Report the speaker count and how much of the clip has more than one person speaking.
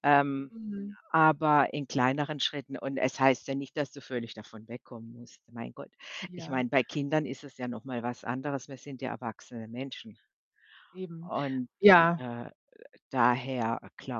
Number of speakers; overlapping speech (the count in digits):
2, about 1%